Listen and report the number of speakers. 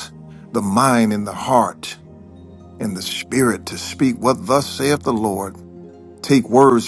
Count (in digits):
1